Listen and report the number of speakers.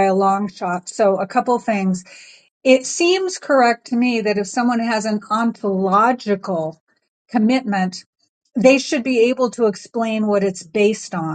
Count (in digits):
1